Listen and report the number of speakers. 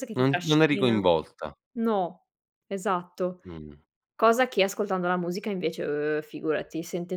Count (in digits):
2